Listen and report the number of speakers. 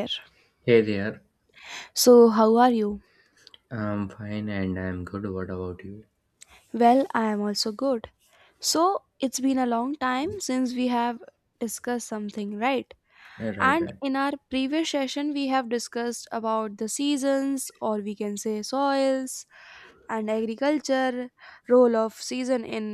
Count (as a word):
two